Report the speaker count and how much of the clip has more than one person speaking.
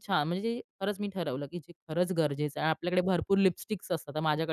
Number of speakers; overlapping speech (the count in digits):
1, no overlap